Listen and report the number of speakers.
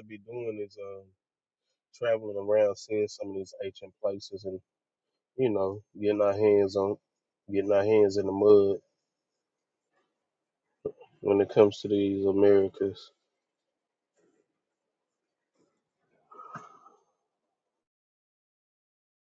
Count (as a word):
one